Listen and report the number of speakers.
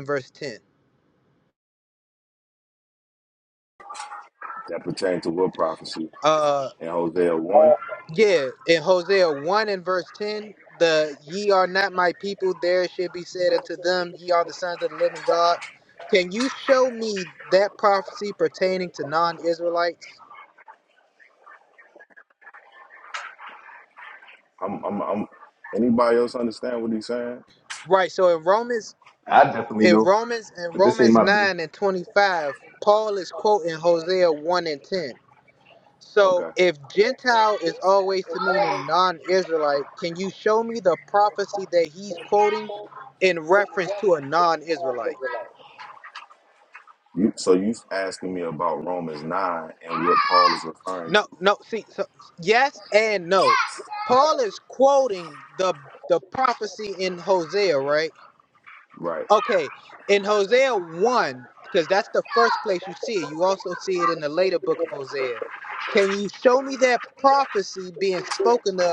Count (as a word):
three